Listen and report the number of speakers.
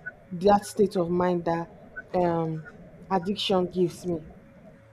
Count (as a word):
one